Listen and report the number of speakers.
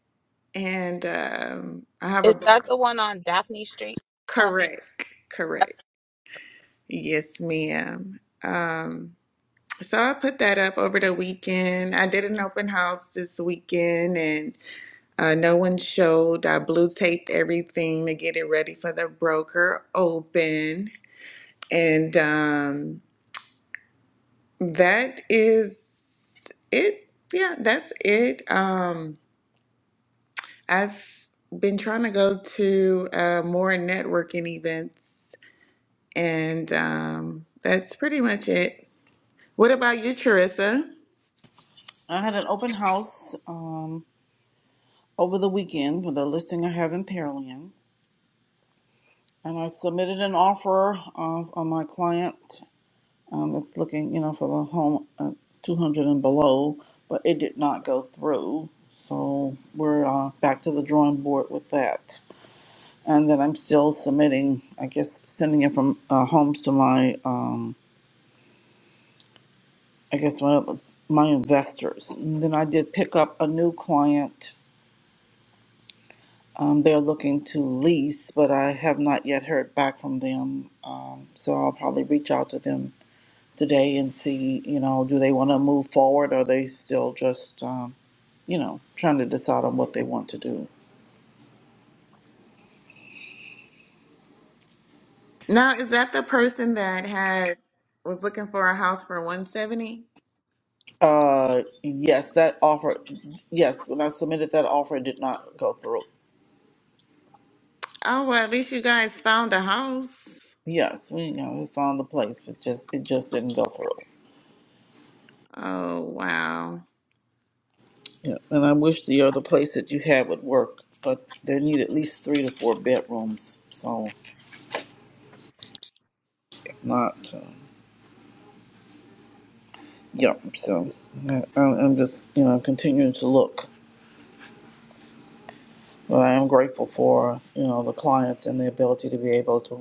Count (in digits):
3